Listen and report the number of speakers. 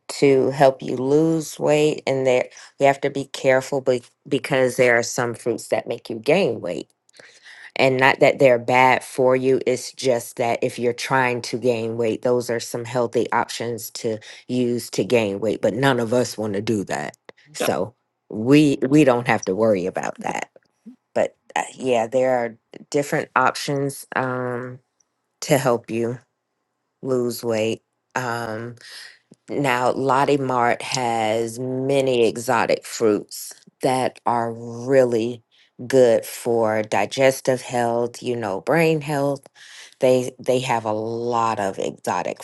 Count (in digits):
1